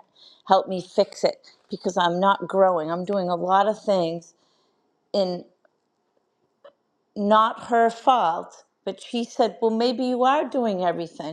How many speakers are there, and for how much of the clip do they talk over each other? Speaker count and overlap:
1, no overlap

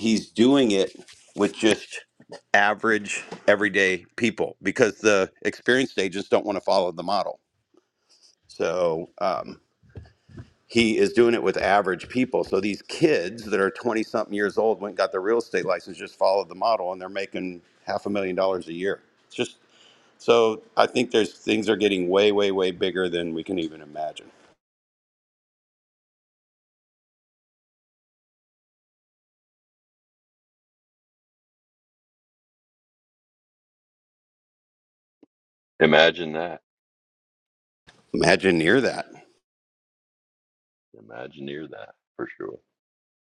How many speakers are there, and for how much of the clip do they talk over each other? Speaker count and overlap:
2, no overlap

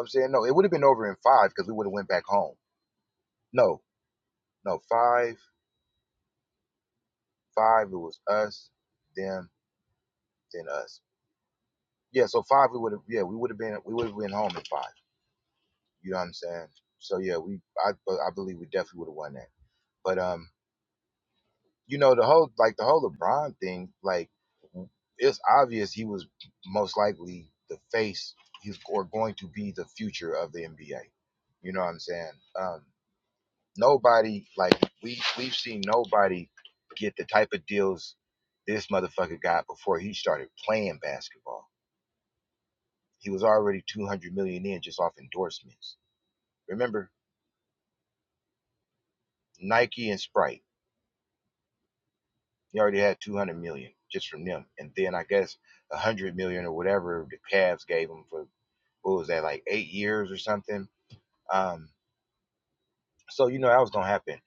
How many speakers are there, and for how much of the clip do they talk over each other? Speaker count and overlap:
1, no overlap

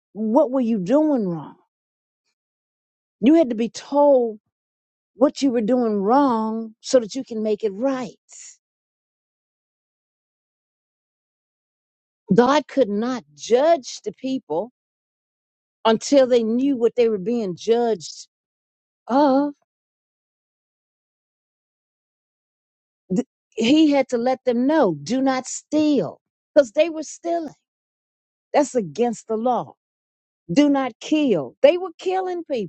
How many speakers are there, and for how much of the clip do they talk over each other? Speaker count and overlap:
1, no overlap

